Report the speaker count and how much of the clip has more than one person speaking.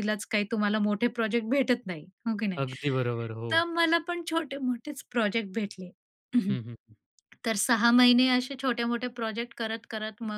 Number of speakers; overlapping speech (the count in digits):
2, about 1%